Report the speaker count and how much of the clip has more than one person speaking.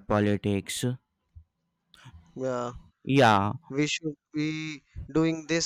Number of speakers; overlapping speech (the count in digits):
2, no overlap